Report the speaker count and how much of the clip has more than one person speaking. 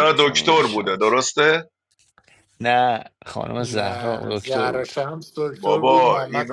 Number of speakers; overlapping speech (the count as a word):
three, about 51%